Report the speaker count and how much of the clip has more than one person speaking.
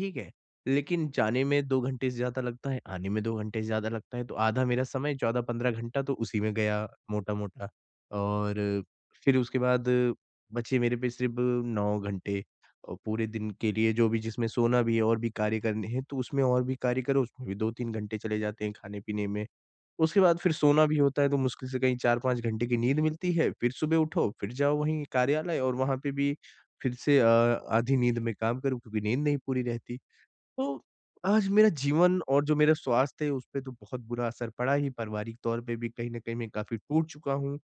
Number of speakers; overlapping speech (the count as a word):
one, no overlap